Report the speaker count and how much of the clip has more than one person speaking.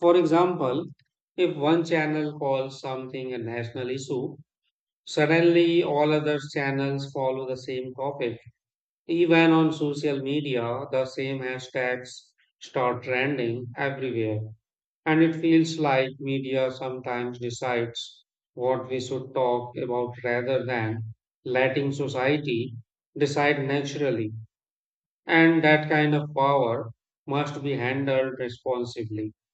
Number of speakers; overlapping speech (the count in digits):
1, no overlap